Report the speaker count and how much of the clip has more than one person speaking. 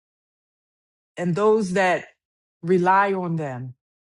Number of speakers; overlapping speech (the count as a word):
one, no overlap